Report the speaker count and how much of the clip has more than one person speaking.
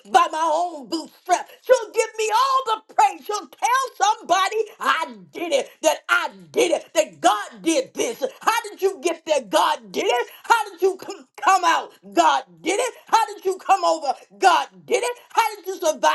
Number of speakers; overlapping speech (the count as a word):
one, no overlap